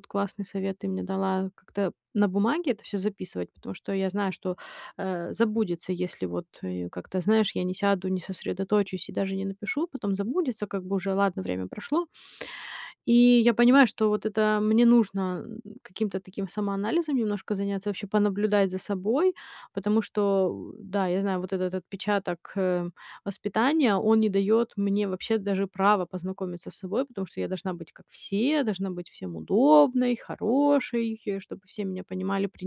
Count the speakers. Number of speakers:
1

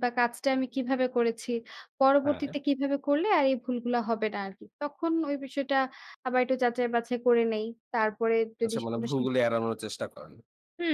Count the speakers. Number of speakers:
2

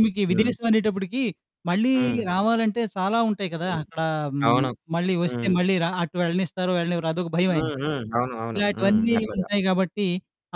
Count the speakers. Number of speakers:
2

